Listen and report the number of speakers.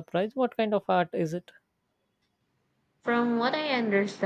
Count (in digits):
2